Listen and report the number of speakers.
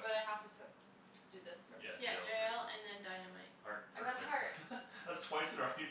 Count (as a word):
three